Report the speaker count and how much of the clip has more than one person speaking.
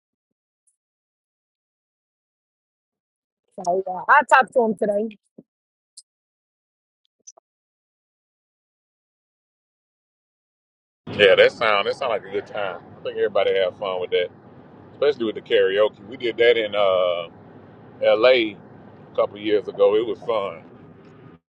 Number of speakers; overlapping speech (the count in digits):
2, no overlap